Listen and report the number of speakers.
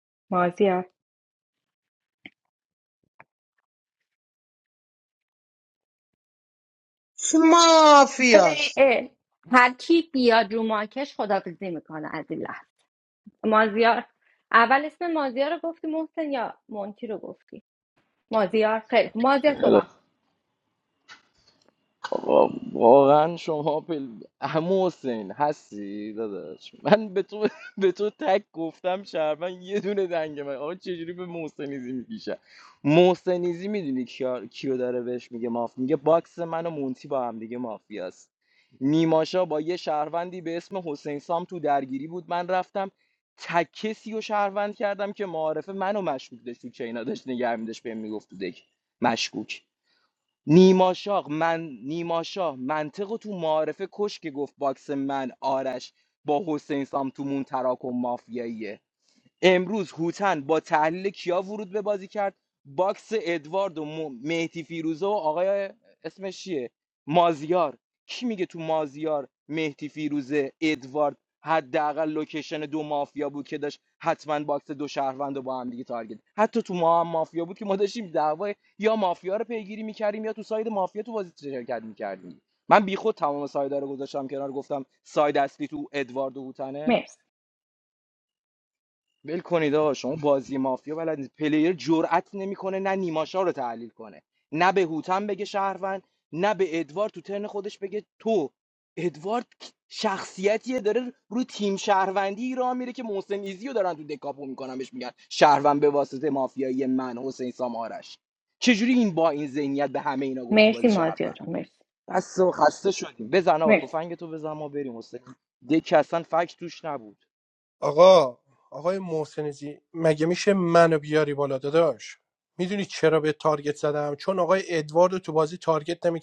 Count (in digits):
4